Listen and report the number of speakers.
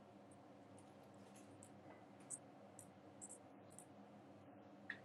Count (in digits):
0